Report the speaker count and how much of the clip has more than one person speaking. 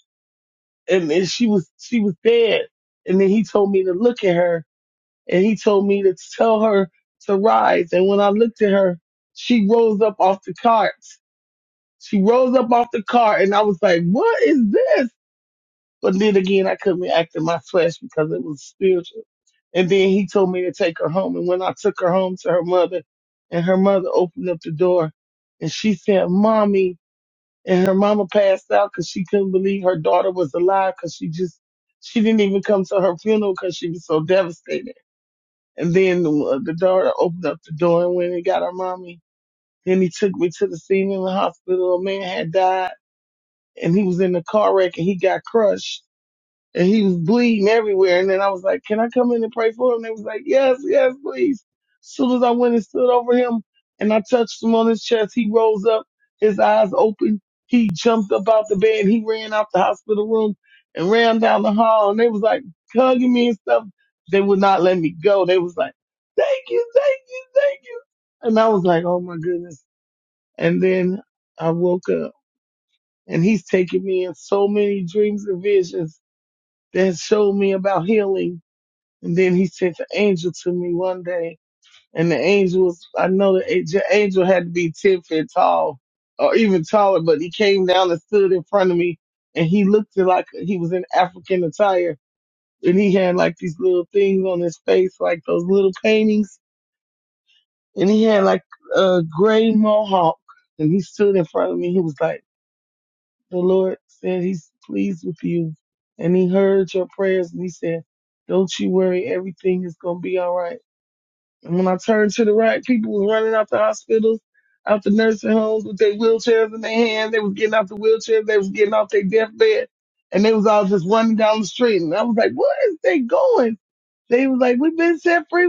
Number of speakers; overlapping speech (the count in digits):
1, no overlap